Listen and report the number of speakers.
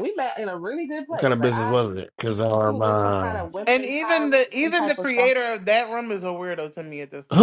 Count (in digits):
3